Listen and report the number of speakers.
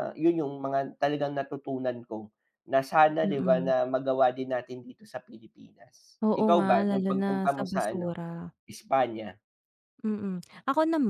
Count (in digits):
2